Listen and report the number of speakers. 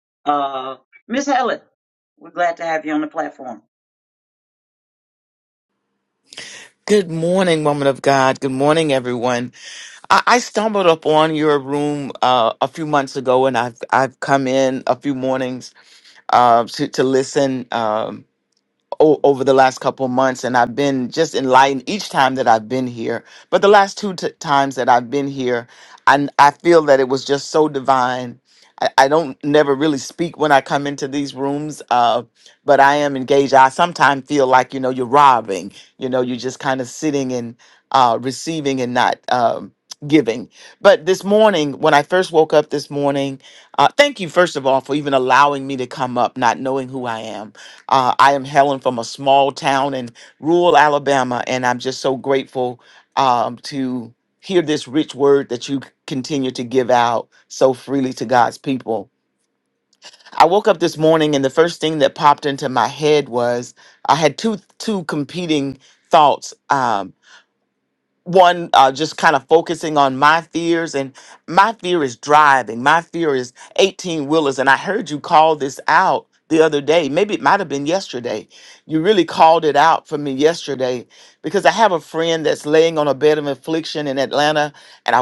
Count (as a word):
two